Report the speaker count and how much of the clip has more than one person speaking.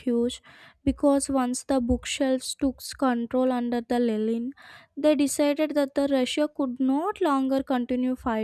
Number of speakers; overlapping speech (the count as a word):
one, no overlap